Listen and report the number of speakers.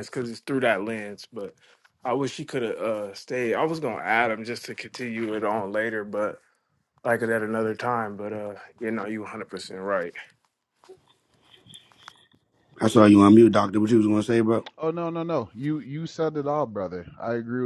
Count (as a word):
three